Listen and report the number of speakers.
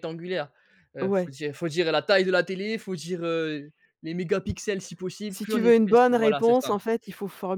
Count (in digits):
2